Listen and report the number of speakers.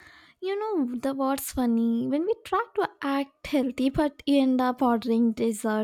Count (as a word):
one